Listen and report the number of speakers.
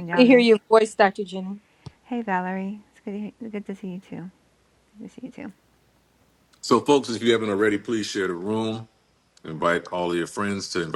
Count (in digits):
3